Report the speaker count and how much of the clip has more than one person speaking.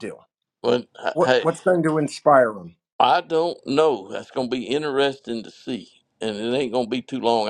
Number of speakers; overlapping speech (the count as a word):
two, about 5%